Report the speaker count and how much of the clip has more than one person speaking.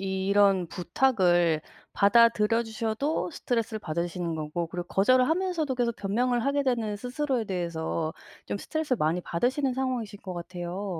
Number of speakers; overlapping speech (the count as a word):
one, no overlap